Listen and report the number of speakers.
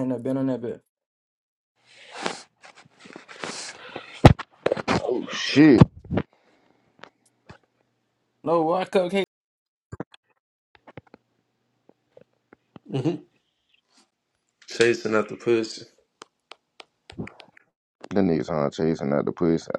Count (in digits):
3